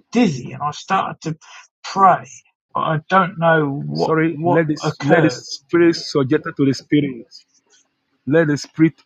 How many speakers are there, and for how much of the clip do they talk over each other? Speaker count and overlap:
2, about 15%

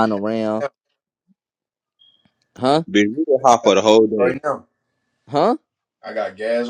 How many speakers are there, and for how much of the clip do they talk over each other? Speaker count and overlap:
3, about 3%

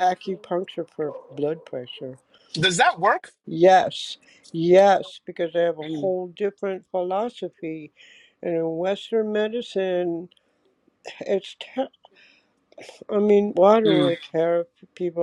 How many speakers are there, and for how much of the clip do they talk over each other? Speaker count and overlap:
2, about 4%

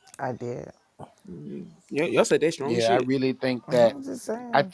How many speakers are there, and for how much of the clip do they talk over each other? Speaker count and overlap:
3, about 17%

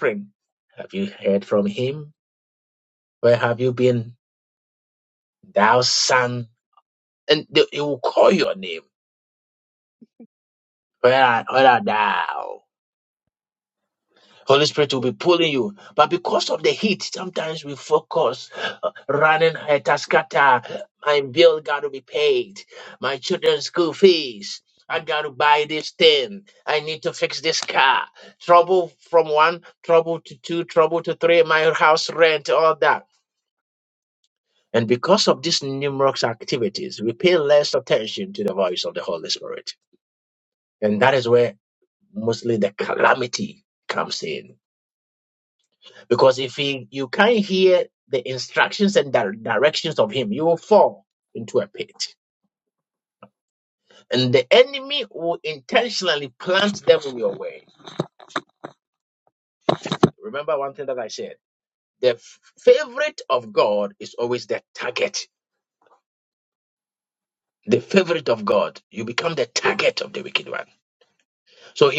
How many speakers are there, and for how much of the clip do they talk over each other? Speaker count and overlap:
1, no overlap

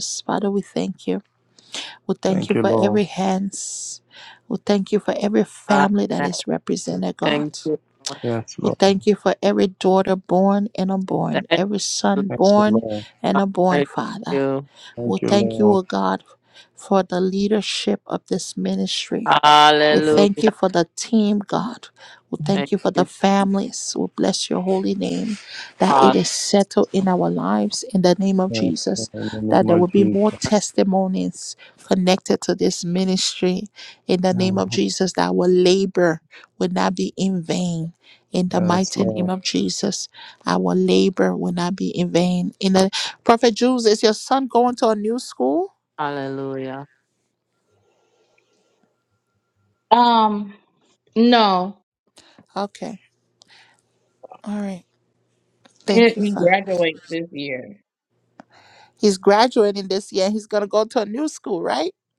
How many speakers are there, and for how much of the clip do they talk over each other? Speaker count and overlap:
4, about 13%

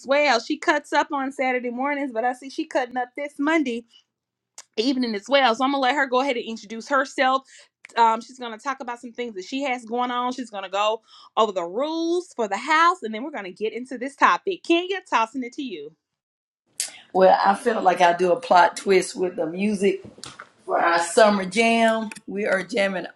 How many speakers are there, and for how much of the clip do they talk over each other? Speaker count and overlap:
2, no overlap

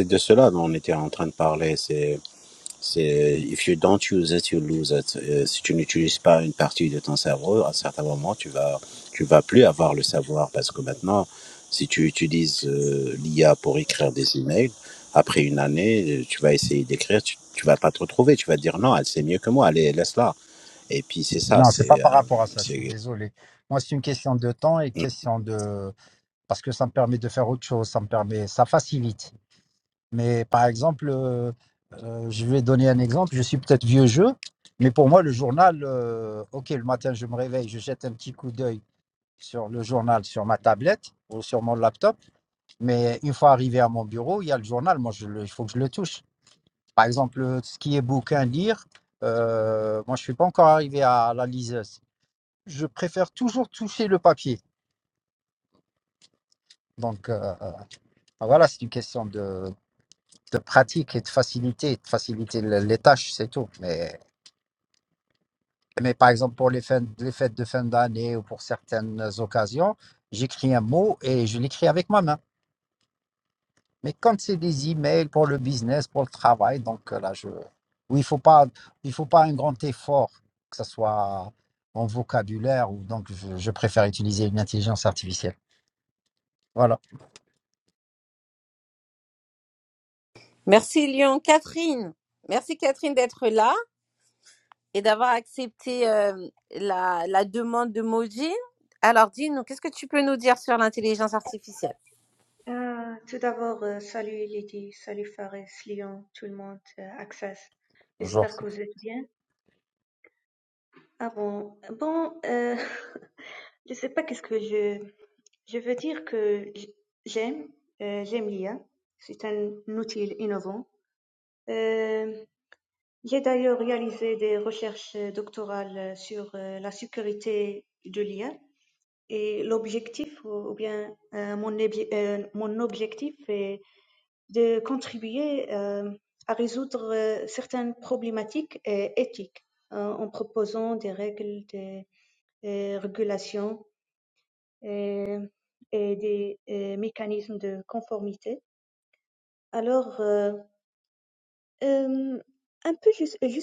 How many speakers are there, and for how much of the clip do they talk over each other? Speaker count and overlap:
4, about 1%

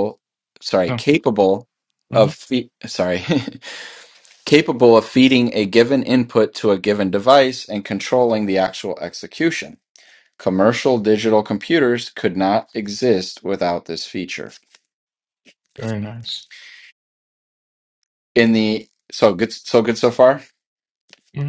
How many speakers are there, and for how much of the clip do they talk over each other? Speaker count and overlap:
2, about 2%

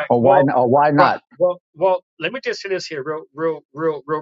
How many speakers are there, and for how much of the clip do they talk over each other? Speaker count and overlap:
2, about 14%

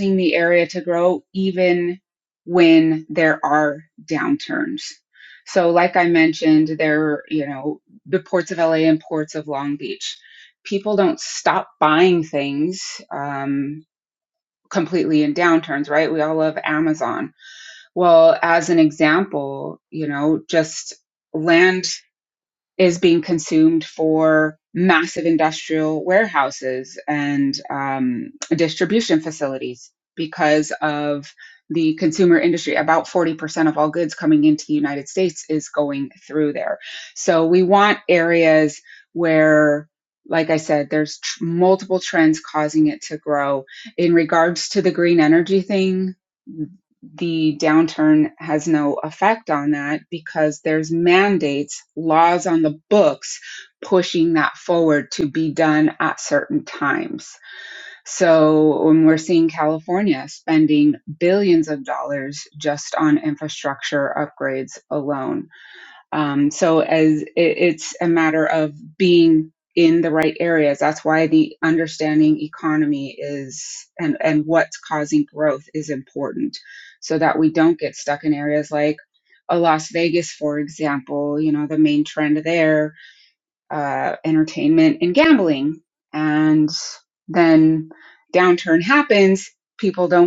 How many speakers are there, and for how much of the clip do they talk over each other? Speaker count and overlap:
1, no overlap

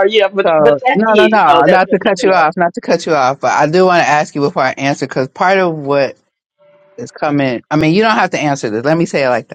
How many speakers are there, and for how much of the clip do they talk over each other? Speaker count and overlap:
2, about 21%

